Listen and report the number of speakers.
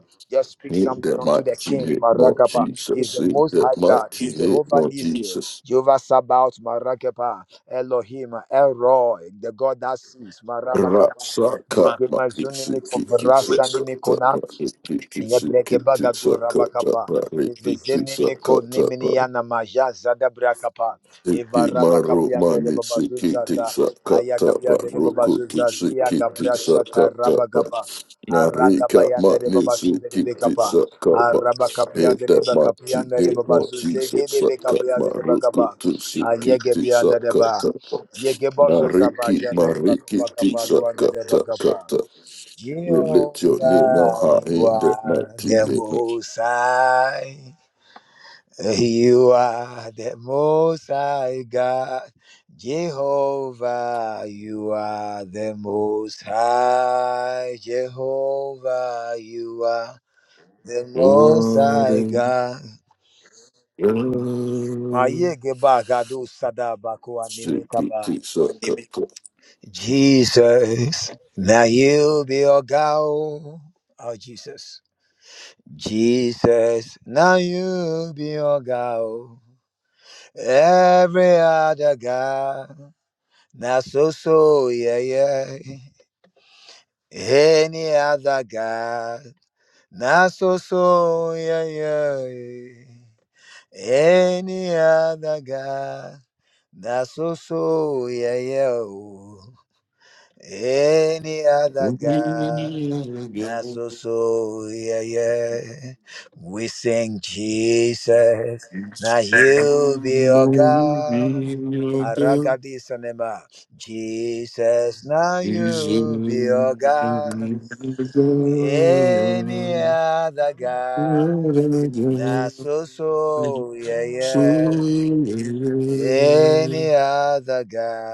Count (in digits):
2